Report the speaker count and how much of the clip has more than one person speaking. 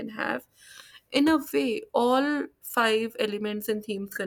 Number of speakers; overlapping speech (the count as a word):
one, no overlap